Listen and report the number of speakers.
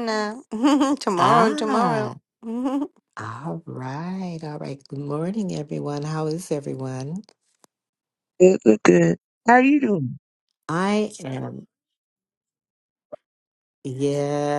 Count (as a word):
three